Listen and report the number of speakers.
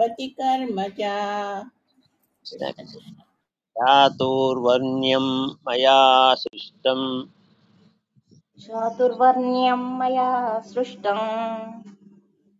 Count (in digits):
3